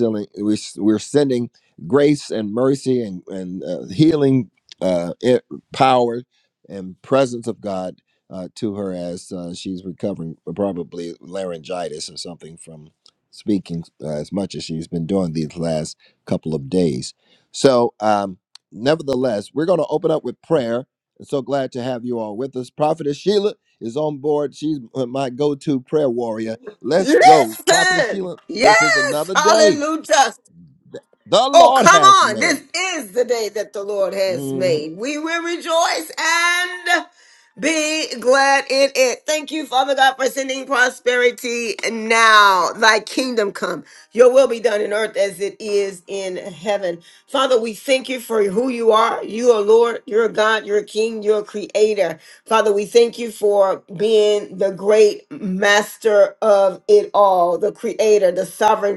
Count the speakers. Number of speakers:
2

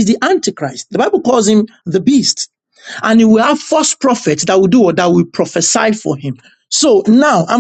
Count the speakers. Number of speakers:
1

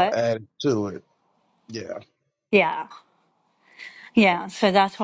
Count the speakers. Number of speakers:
2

